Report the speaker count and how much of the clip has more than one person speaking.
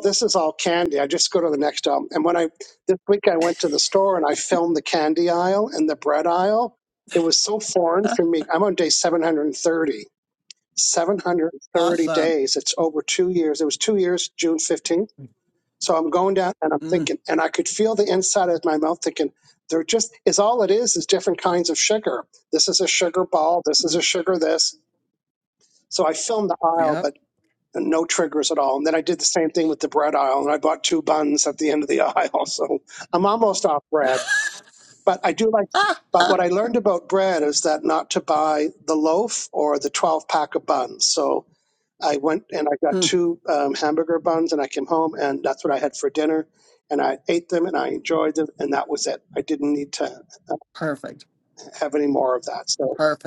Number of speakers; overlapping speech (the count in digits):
2, about 4%